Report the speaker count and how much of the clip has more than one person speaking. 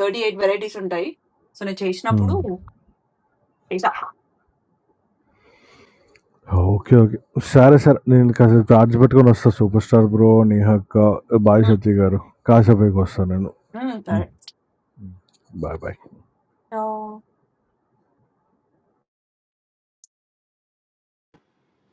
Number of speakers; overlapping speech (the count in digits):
2, about 2%